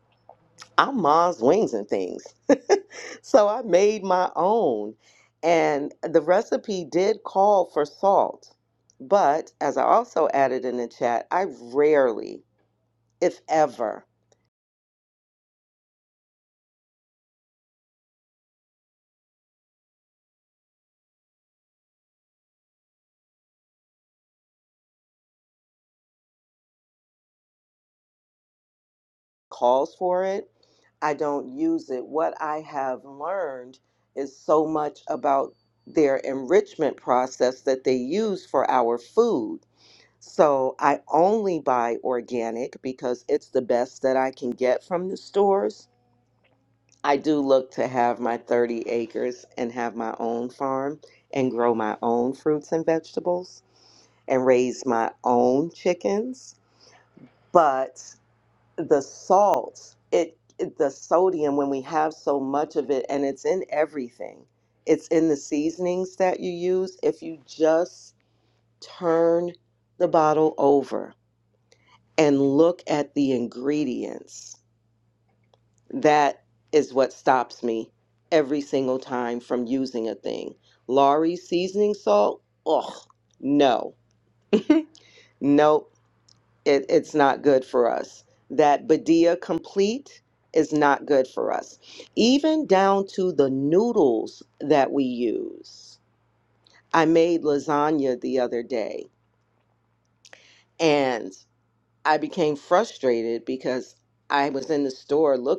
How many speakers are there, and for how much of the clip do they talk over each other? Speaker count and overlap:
1, no overlap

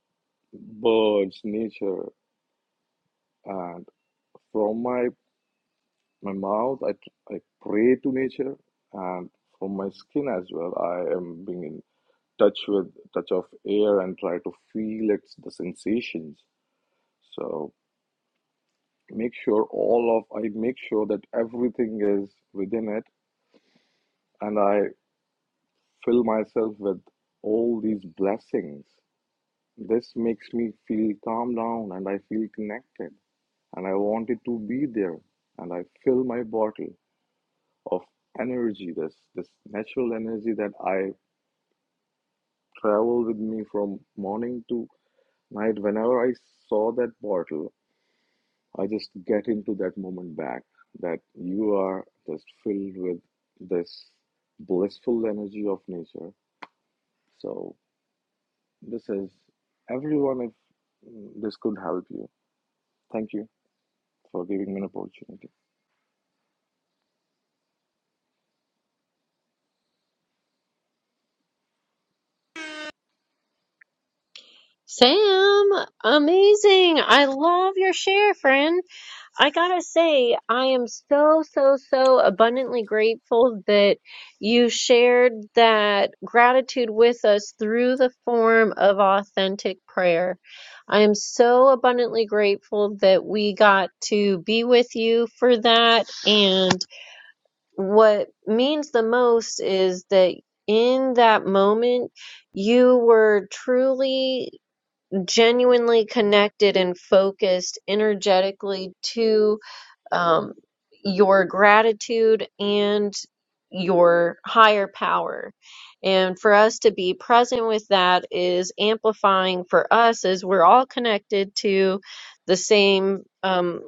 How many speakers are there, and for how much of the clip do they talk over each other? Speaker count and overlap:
2, no overlap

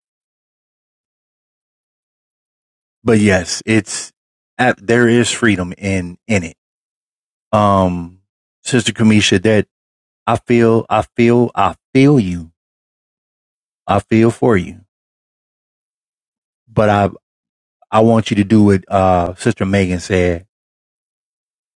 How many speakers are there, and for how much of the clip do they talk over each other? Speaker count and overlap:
1, no overlap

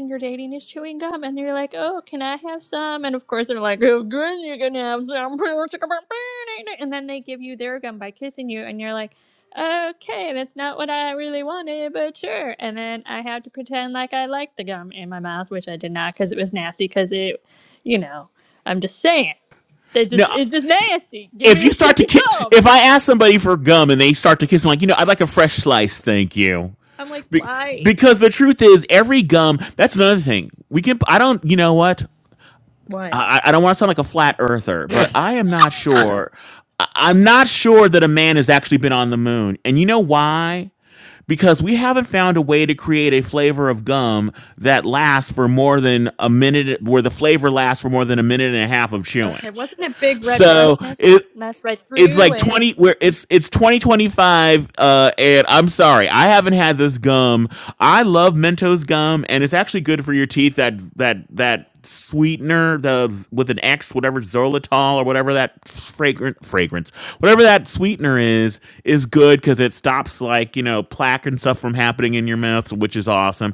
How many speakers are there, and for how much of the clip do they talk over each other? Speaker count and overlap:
2, about 4%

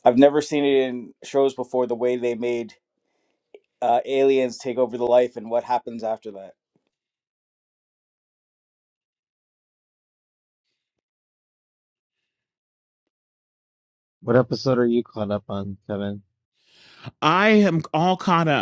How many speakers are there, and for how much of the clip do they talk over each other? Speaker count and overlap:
3, no overlap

